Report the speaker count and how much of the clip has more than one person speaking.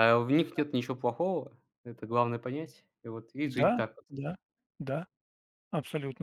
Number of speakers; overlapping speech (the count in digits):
2, about 10%